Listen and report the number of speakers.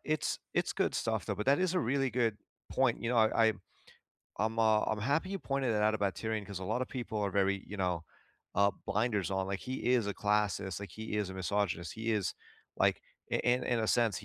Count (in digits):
1